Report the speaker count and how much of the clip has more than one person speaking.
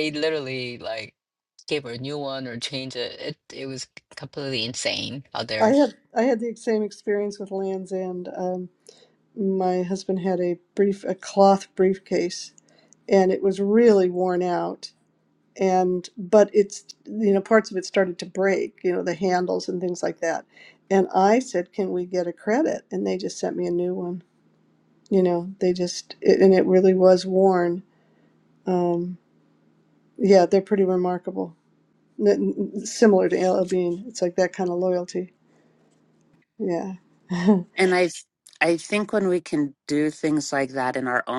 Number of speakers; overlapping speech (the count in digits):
3, under 1%